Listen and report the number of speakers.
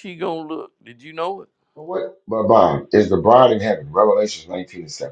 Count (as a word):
two